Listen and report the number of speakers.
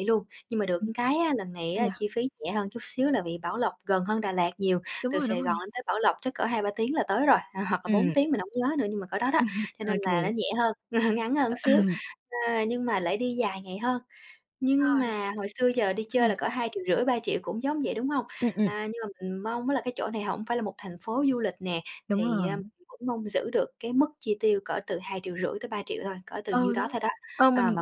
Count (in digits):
2